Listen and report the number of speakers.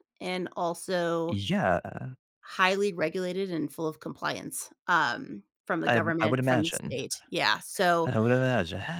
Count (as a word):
two